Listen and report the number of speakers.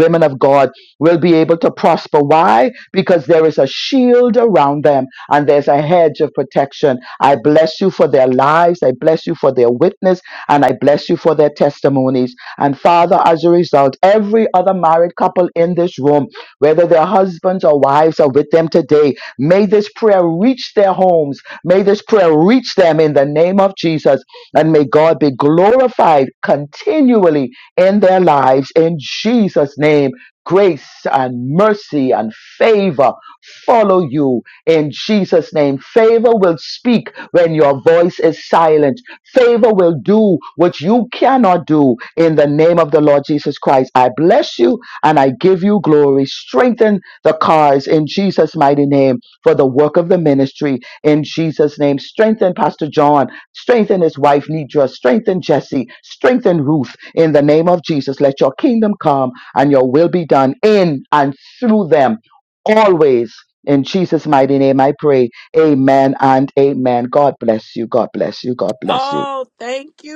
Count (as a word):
two